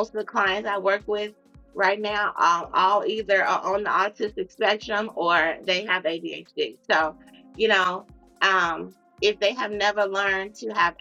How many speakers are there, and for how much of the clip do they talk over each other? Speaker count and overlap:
one, no overlap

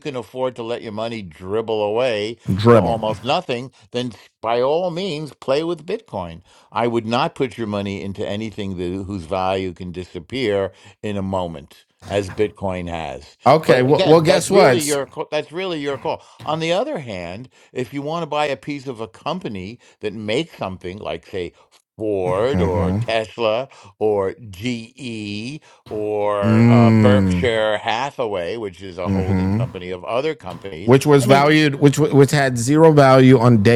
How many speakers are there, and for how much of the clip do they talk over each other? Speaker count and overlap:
two, about 11%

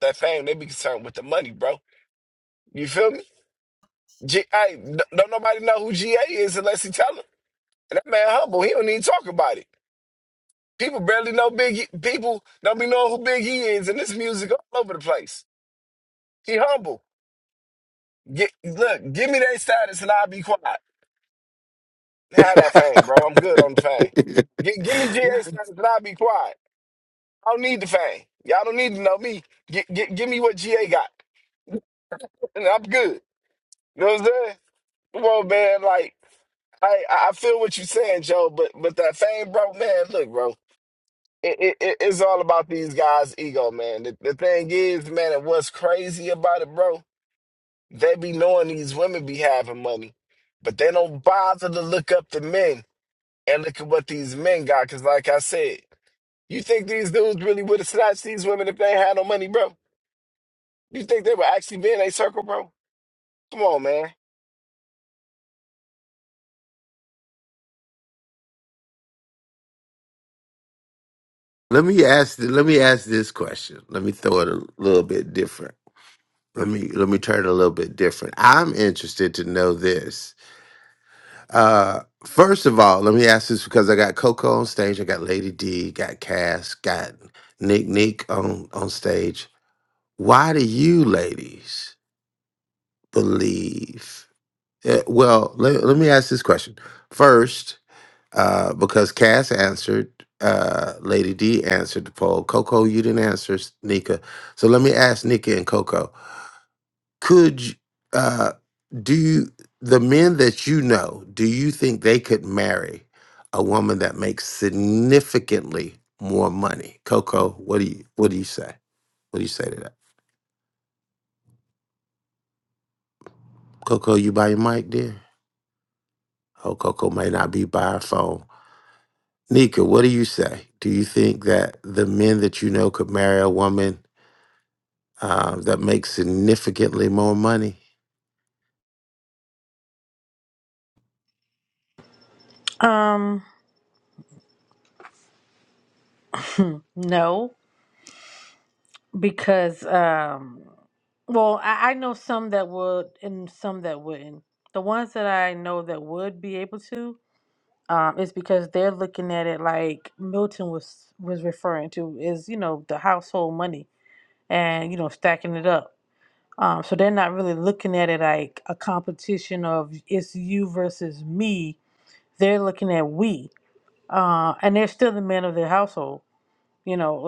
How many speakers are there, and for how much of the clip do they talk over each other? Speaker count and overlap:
three, no overlap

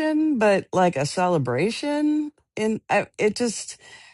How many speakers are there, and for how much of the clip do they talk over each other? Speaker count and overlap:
one, no overlap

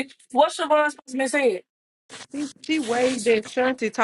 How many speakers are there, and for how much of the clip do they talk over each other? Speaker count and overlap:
two, no overlap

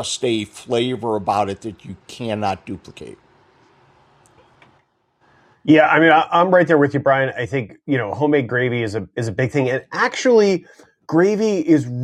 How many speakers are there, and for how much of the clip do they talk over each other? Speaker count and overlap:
two, no overlap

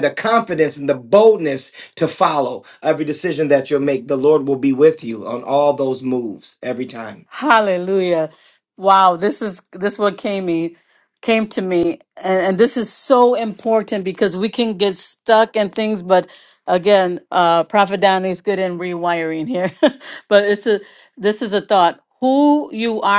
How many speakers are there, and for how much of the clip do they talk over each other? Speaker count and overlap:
two, no overlap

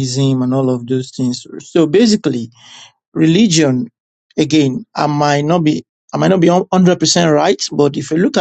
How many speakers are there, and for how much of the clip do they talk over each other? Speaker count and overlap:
one, no overlap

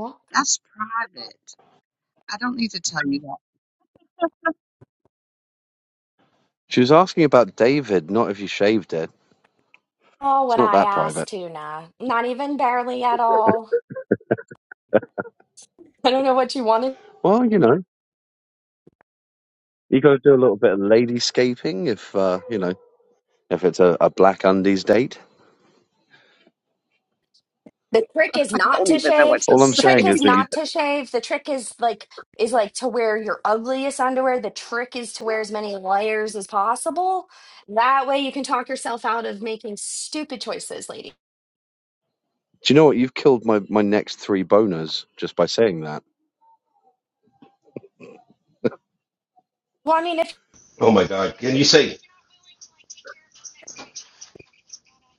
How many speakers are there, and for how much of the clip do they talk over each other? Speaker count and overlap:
four, about 5%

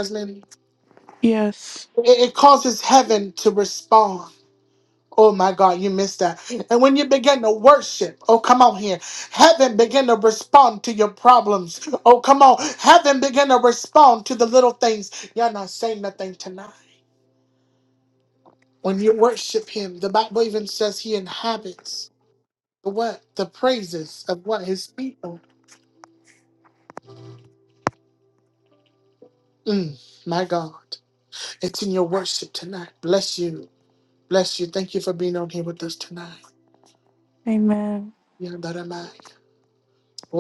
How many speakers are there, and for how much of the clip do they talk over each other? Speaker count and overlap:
two, no overlap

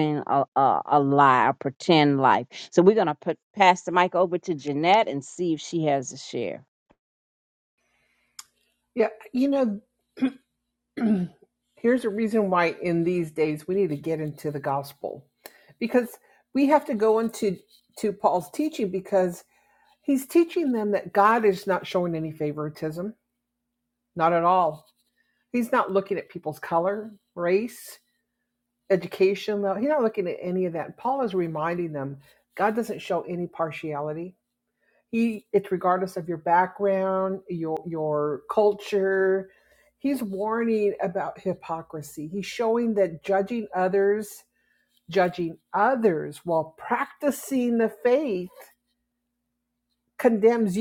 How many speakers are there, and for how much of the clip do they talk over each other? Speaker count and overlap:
two, no overlap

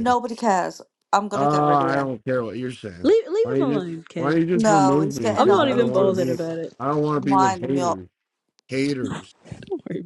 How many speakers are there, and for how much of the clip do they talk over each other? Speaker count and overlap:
three, about 41%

